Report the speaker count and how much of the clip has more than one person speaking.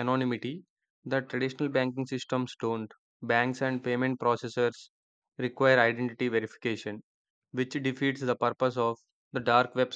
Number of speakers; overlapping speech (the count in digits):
1, no overlap